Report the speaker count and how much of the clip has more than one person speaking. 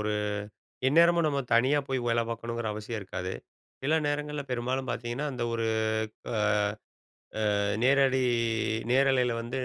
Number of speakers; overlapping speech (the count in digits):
1, no overlap